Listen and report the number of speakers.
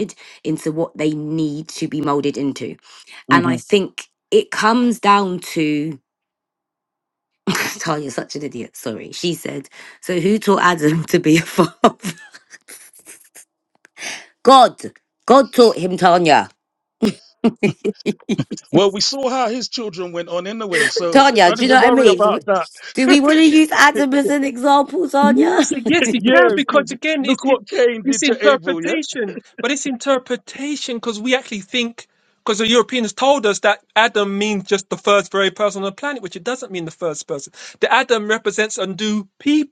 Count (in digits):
3